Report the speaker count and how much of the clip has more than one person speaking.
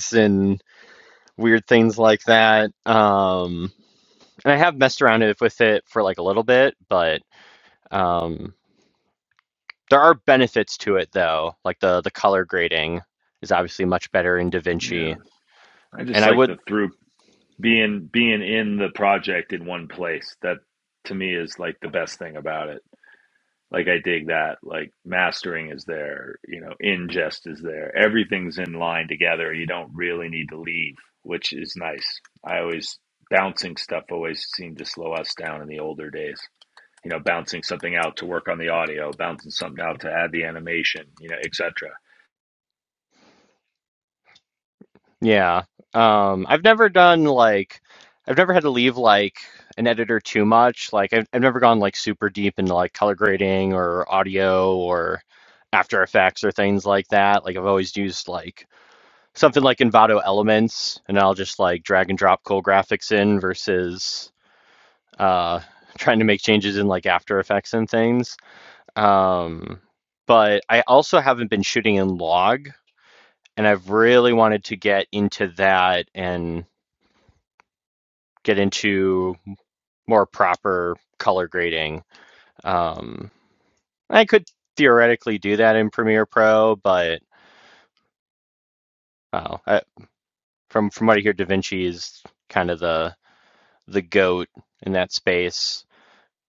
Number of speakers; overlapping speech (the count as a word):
two, about 1%